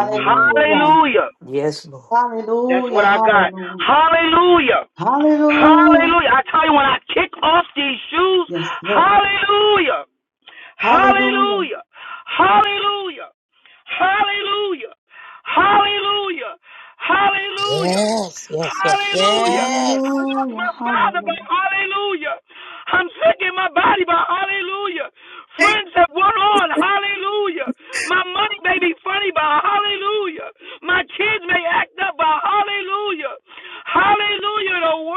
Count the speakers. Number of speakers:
four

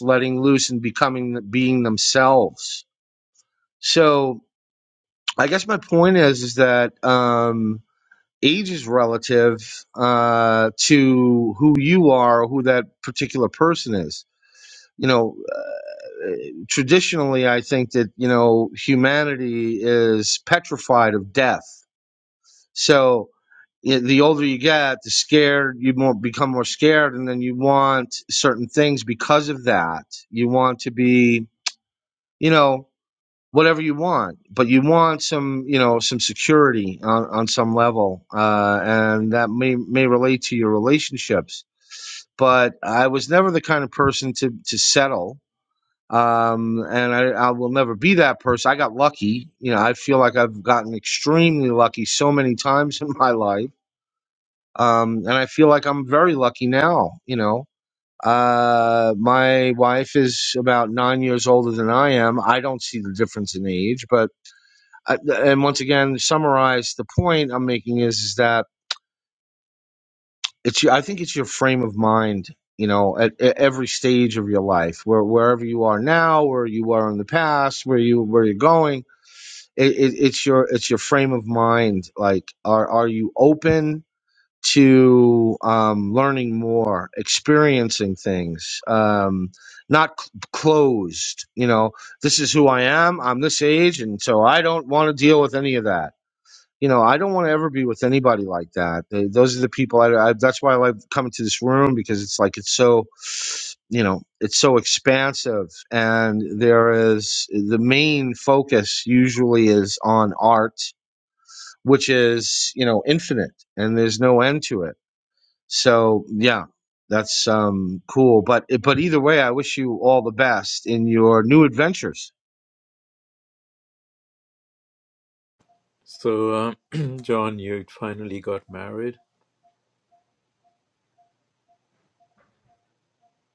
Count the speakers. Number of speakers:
two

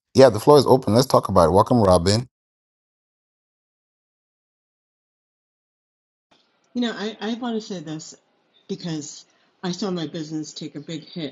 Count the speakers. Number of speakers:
two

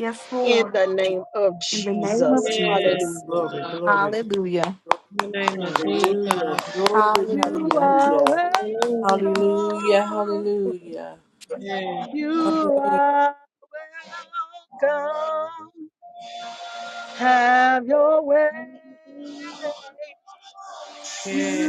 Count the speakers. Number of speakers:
four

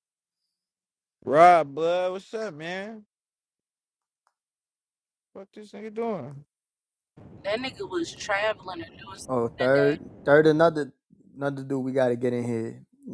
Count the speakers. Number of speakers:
three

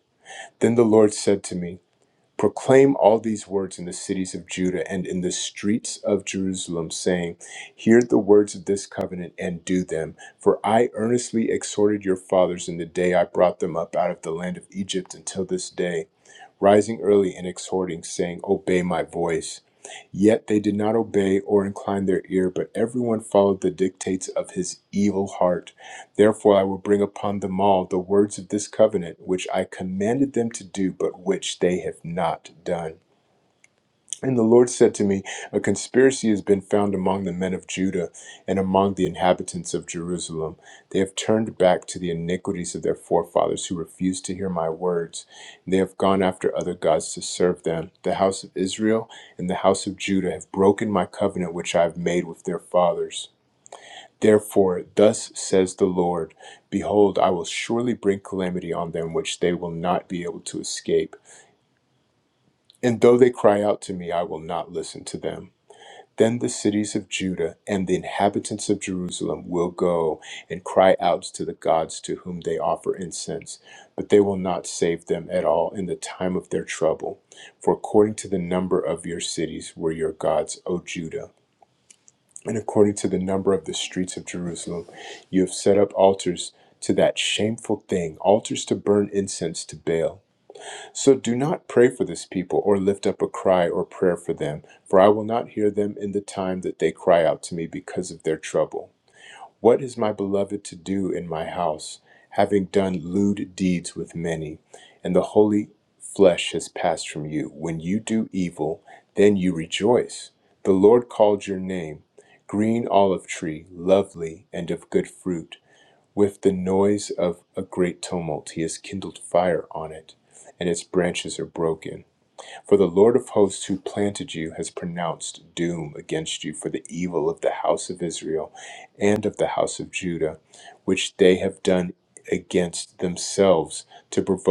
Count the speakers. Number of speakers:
one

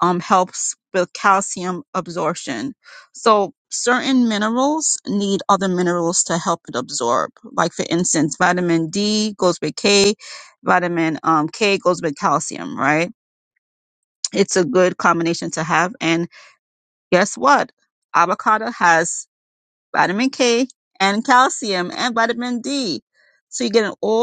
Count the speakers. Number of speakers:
one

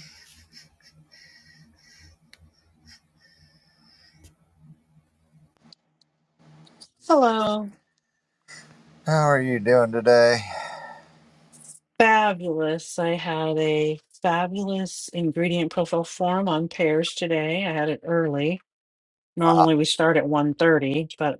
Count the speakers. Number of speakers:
two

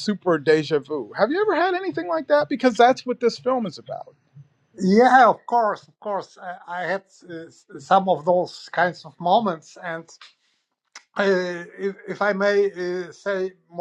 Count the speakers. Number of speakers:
two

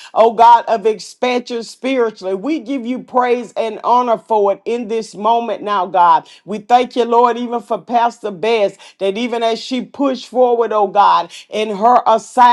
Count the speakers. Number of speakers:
one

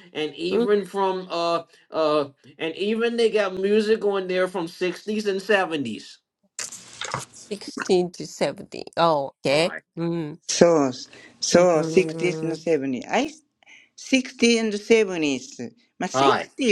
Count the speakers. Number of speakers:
three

